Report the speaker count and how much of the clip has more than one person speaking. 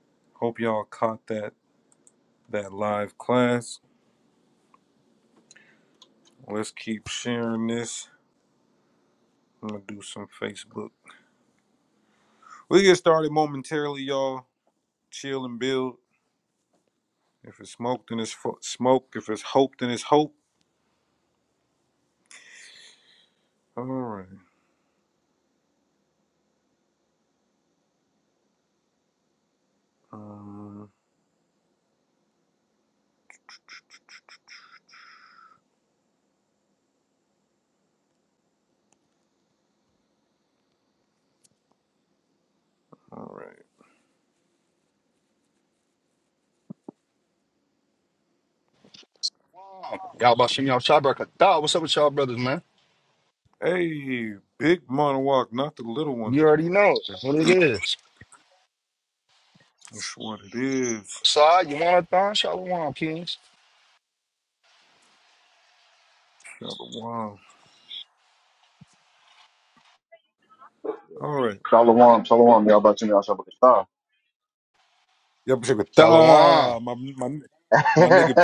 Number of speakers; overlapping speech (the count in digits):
3, about 1%